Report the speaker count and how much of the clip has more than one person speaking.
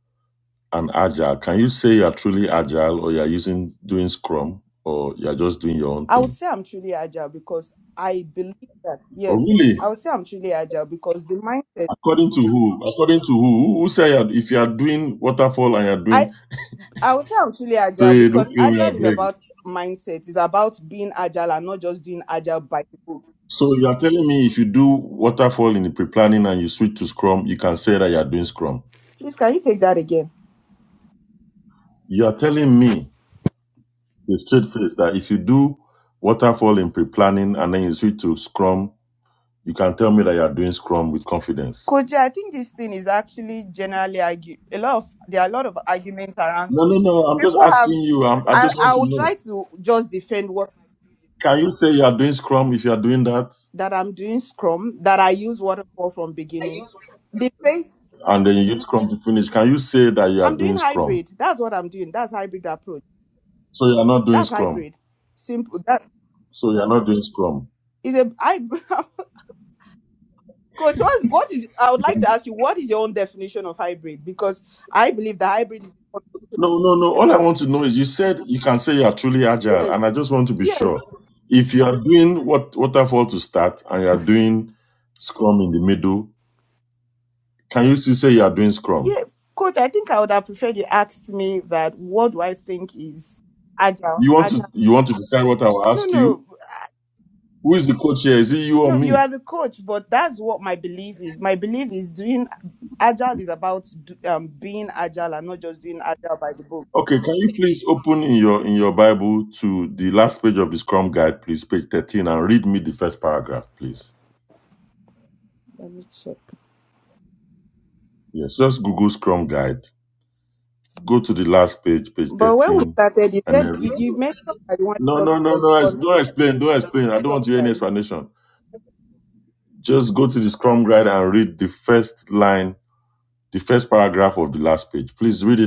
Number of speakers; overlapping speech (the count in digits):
2, about 7%